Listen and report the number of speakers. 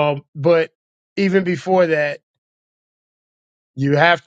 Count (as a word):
one